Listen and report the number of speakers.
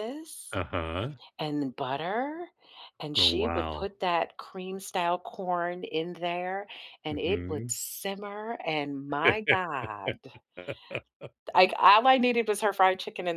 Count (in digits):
2